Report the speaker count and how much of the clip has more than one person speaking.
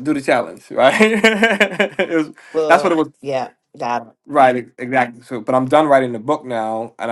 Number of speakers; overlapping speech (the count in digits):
2, about 6%